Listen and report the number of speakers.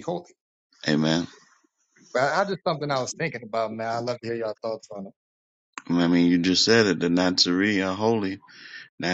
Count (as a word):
two